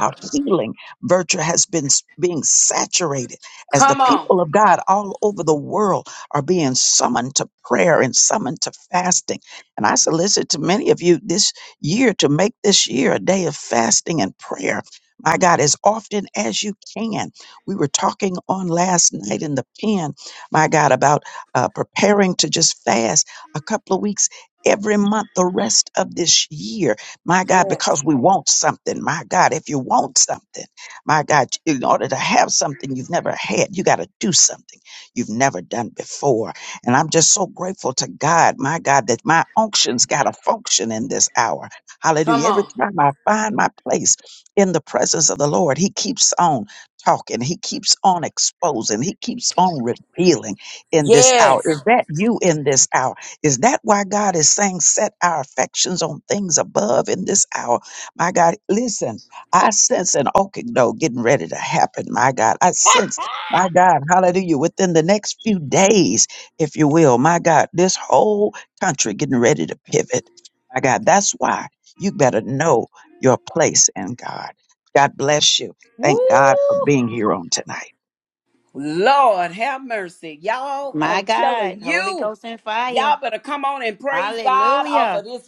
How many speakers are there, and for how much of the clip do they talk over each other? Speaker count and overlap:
3, about 6%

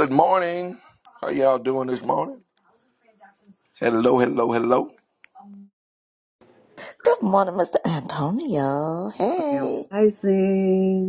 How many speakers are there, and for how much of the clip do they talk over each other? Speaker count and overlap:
3, about 3%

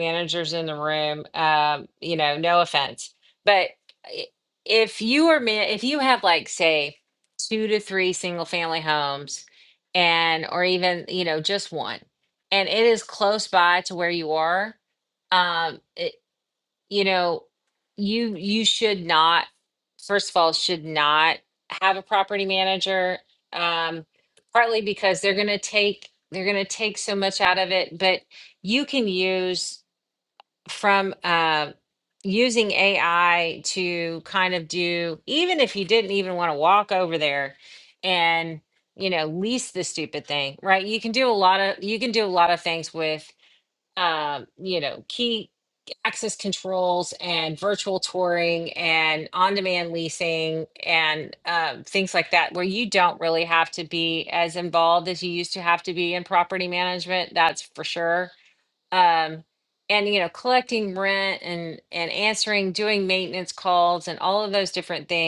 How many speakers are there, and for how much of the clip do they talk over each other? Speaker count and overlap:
1, no overlap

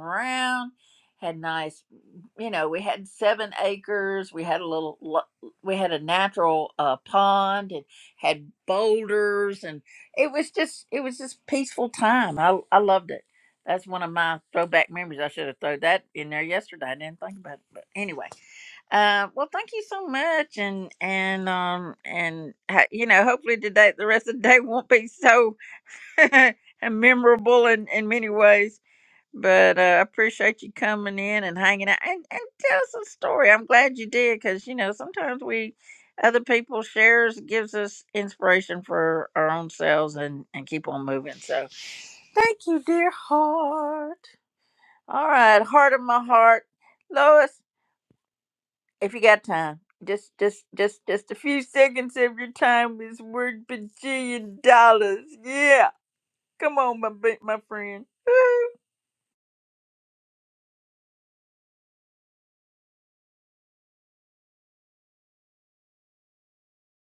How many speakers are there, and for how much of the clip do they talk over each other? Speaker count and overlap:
1, no overlap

